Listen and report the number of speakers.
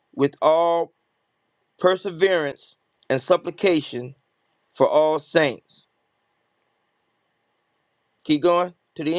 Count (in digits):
1